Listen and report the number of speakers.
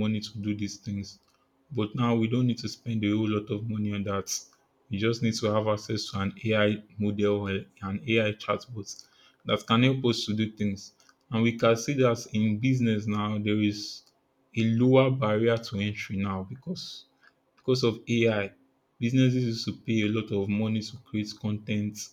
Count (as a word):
one